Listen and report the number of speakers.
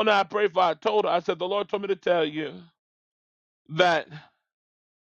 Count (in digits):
1